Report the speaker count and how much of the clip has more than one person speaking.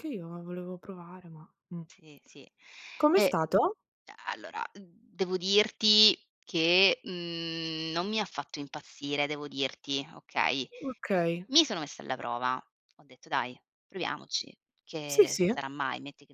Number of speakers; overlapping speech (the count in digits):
2, about 4%